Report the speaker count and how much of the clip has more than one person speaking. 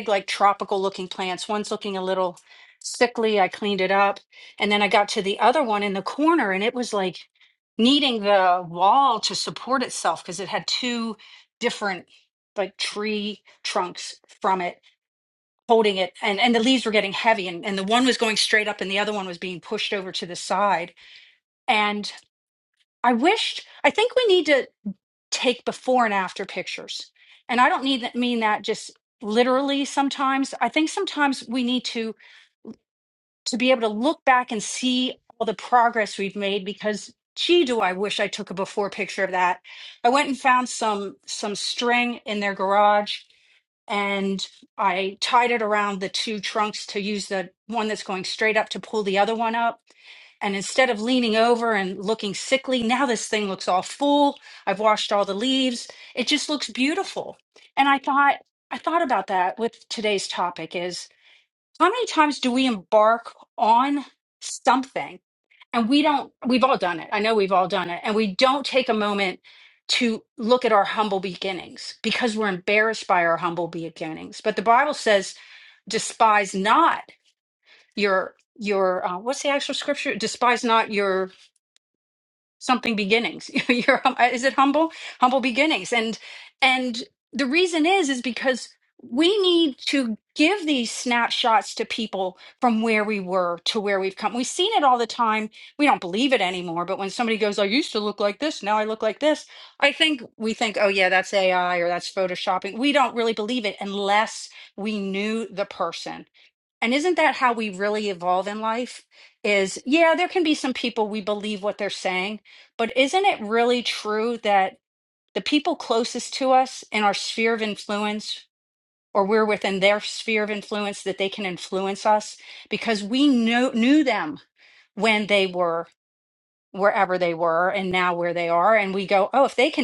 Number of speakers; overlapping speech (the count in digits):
1, no overlap